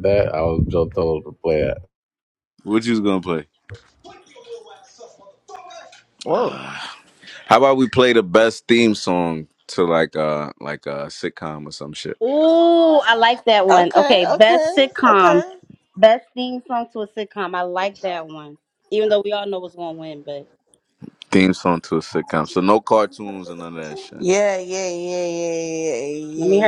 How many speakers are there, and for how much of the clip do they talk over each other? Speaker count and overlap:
four, about 9%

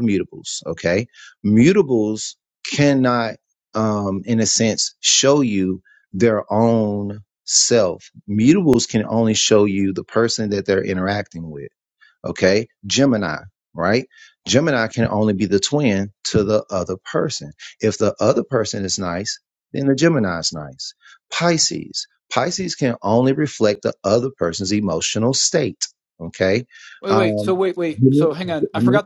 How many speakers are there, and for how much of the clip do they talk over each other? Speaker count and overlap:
two, about 3%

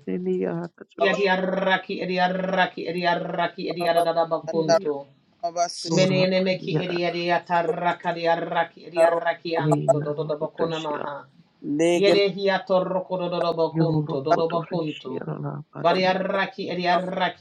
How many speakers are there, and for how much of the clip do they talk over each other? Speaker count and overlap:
three, about 30%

